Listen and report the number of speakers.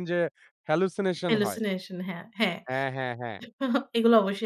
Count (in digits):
2